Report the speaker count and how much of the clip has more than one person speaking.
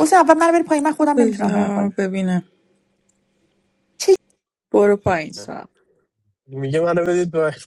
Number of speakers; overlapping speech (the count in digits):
3, about 10%